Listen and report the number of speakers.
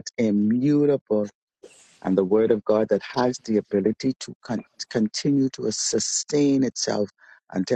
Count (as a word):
one